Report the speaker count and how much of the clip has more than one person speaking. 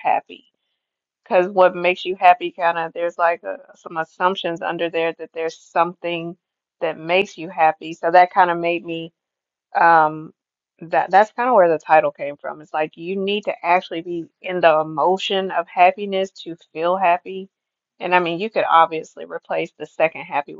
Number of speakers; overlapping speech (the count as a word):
one, no overlap